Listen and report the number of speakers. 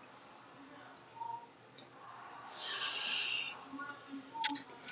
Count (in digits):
0